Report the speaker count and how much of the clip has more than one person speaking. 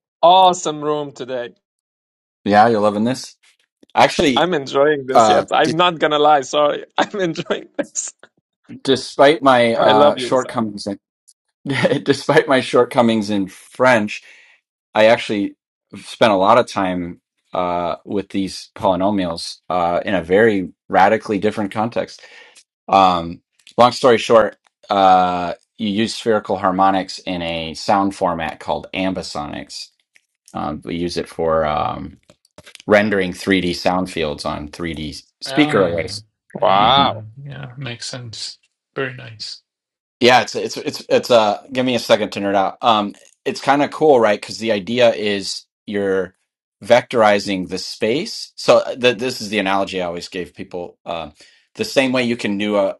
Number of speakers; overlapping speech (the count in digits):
3, about 5%